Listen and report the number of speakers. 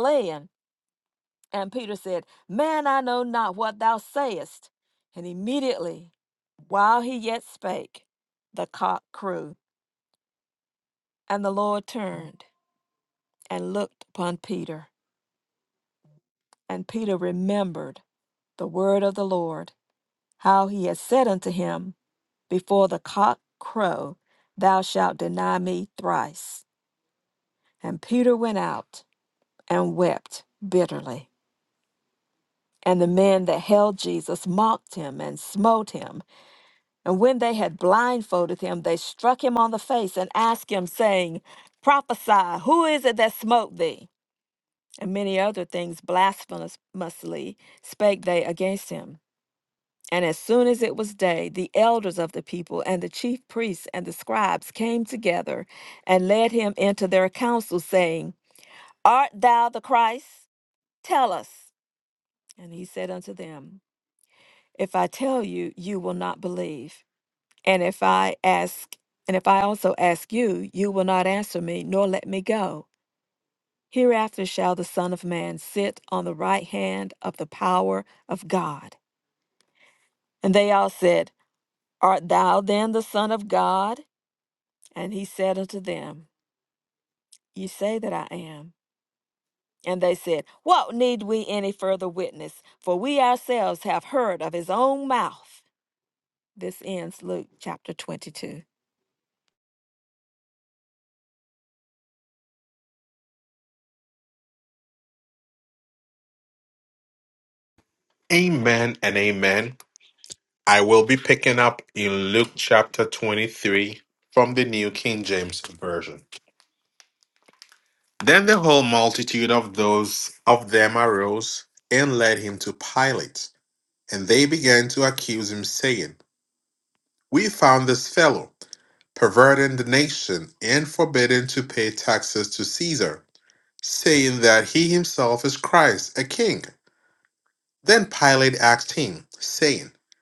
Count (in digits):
2